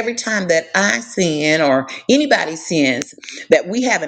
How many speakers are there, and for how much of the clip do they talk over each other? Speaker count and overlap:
one, no overlap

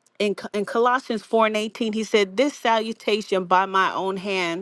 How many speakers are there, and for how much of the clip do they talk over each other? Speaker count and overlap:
one, no overlap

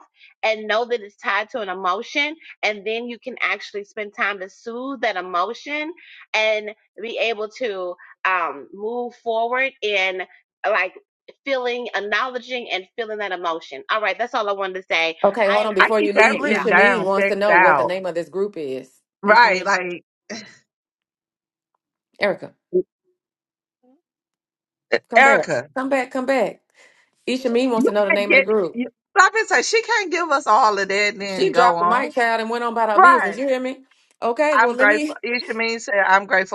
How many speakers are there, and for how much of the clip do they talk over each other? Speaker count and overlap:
three, about 18%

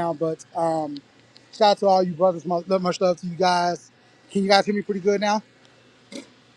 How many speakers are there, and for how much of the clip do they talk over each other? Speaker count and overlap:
one, no overlap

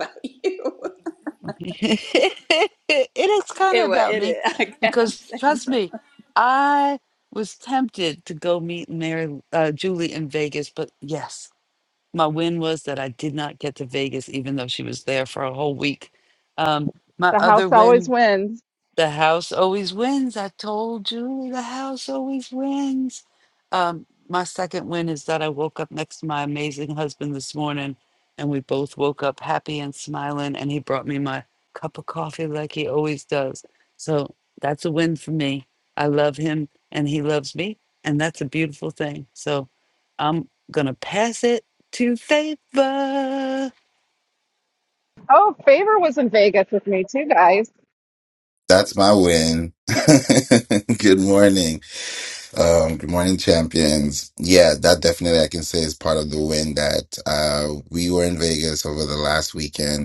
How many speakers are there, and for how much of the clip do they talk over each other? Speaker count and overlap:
four, about 3%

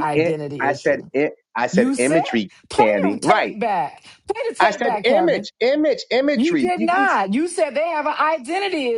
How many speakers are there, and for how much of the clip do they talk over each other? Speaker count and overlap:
two, about 44%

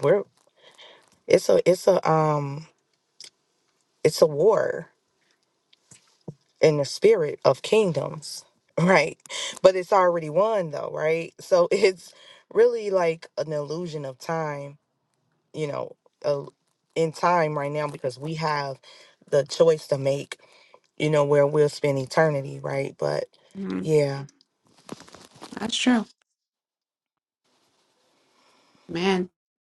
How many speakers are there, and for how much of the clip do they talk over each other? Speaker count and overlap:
two, under 1%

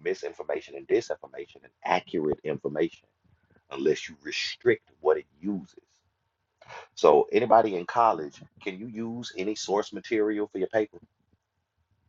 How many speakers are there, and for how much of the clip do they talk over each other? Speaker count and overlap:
one, no overlap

